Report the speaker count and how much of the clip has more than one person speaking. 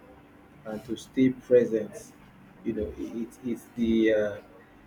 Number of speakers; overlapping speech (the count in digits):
1, no overlap